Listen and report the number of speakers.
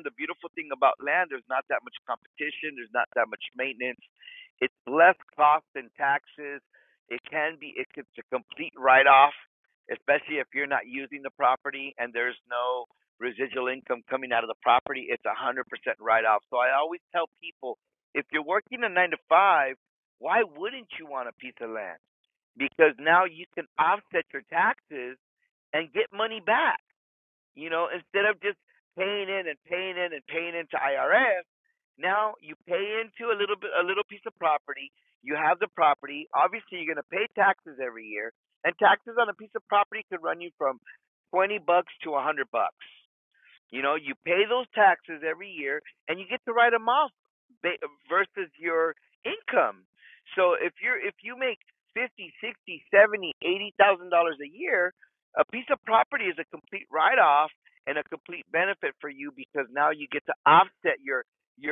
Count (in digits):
1